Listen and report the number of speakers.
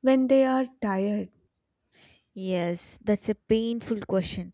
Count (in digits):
2